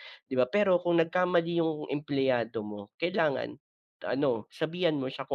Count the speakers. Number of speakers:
one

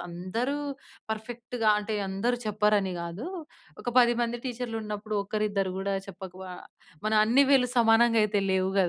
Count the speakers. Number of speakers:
one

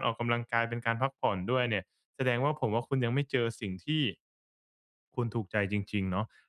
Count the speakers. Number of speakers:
one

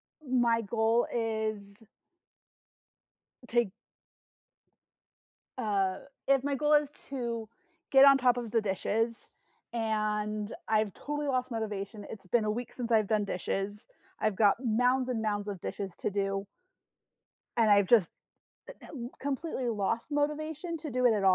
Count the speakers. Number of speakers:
one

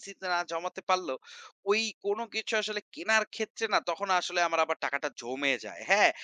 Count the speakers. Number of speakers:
one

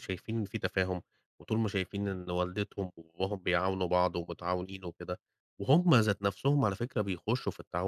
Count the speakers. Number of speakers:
one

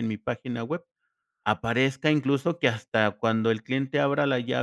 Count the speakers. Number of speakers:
one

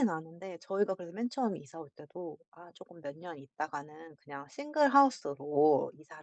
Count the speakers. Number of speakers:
one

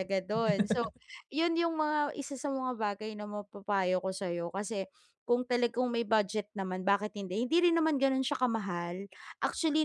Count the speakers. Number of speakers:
one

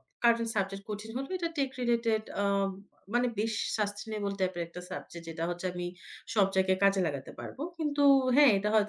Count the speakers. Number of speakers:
one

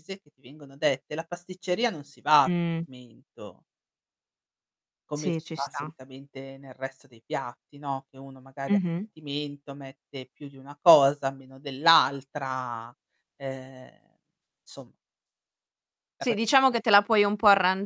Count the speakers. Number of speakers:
two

